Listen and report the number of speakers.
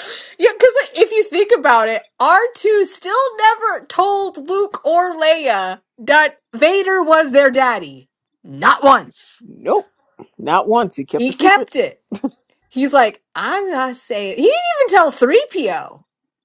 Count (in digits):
2